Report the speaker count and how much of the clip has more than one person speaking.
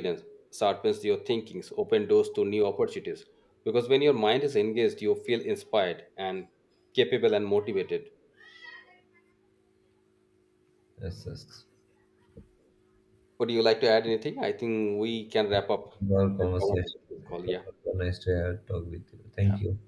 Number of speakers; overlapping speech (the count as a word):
two, about 2%